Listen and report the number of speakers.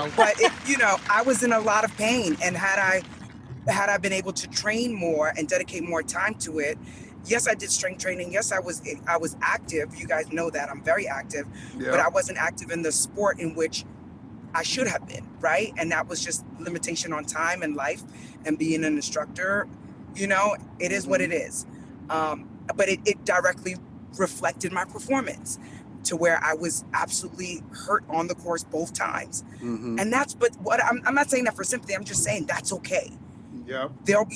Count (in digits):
2